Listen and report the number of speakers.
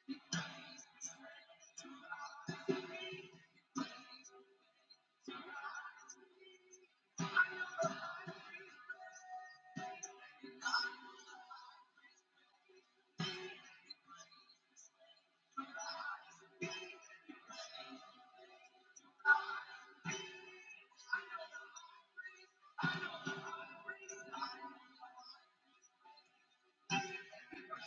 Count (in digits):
0